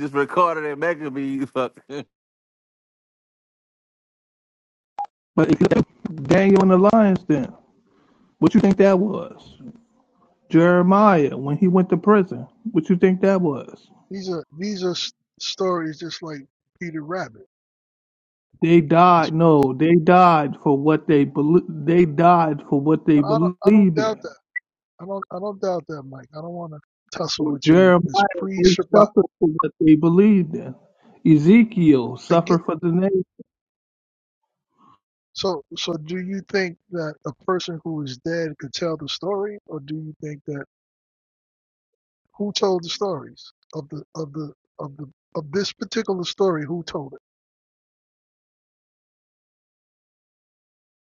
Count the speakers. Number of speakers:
three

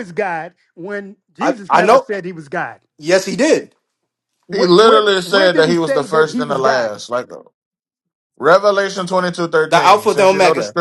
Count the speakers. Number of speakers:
three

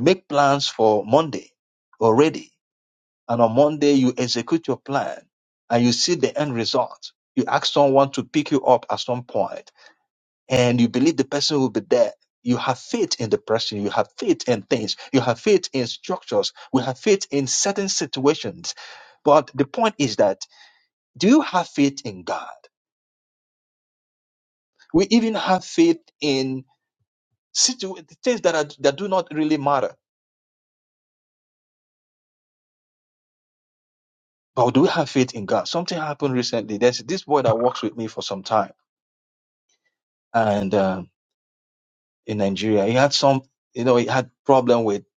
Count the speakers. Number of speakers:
one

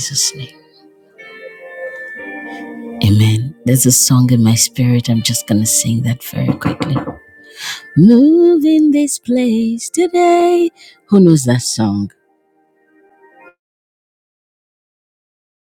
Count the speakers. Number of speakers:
one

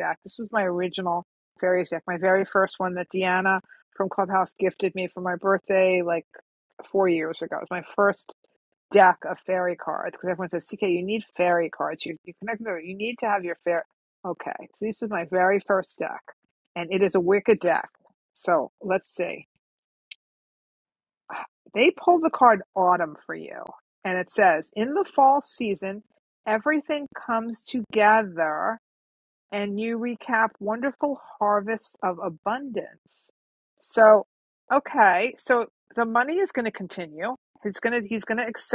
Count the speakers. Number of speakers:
one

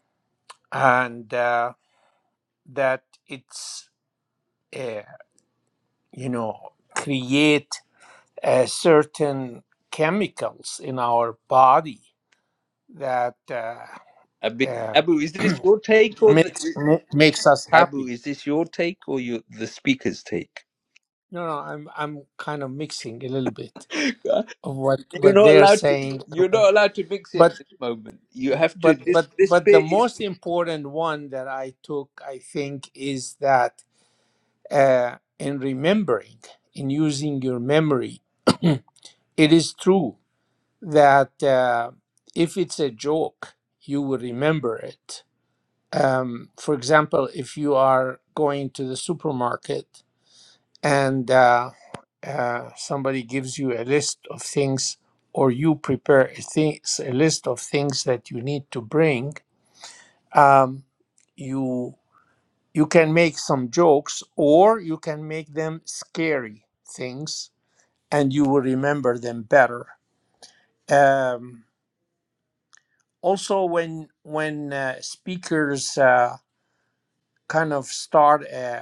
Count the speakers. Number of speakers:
two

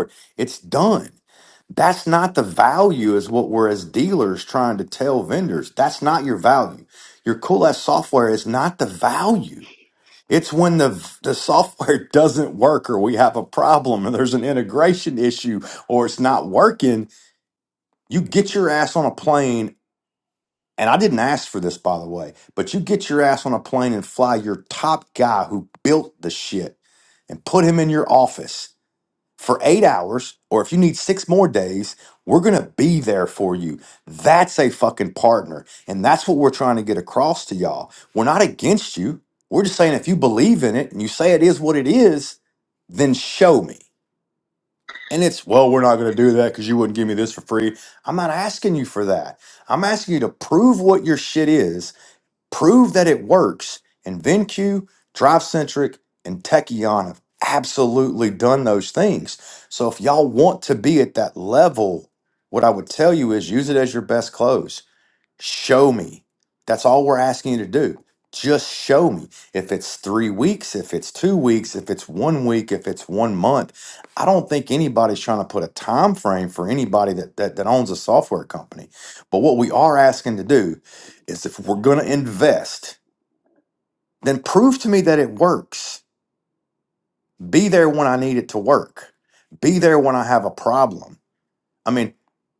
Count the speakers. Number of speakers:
one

